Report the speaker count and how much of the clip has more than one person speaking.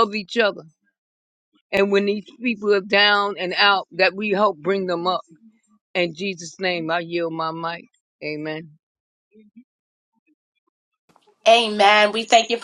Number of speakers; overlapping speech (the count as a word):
two, no overlap